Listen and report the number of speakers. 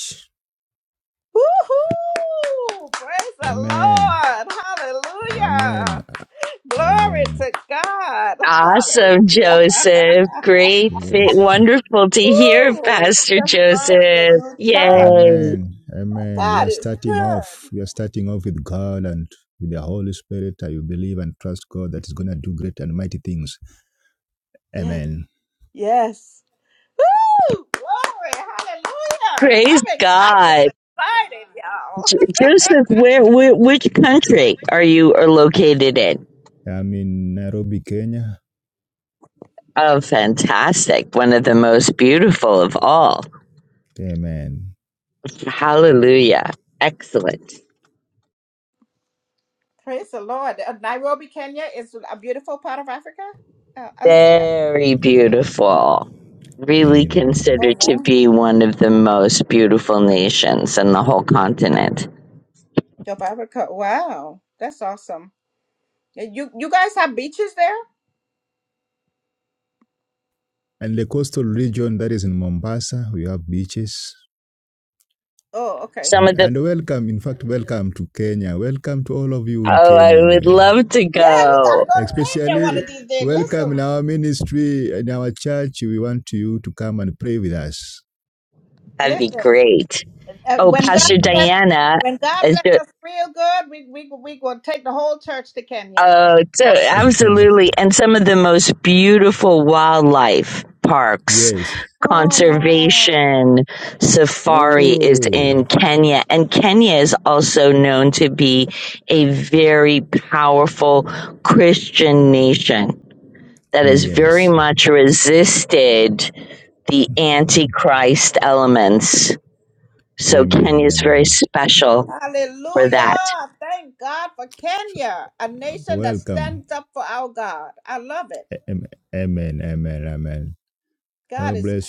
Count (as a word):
three